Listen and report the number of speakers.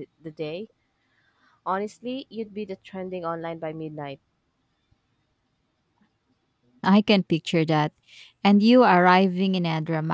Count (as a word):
two